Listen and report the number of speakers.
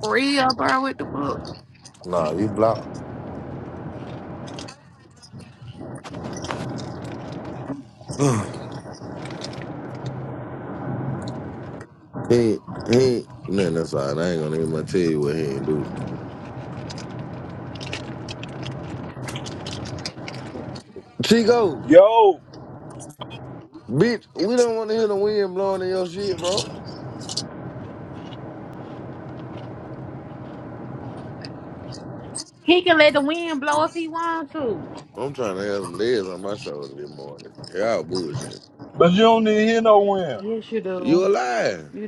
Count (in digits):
4